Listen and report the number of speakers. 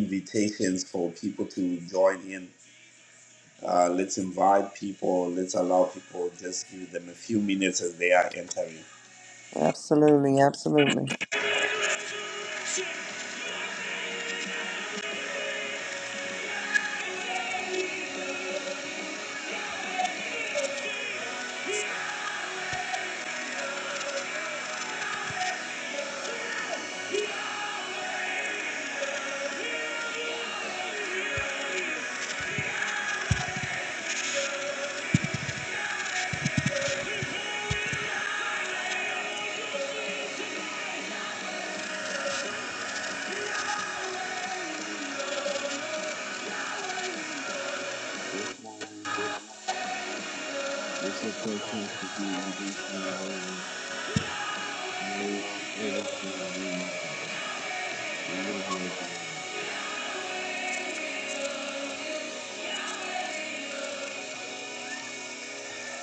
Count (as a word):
three